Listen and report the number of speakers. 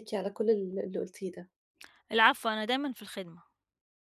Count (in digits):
2